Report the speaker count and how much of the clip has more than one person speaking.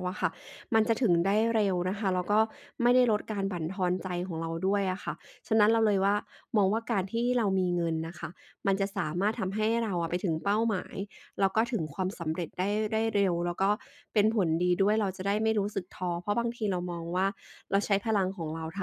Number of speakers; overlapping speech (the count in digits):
1, no overlap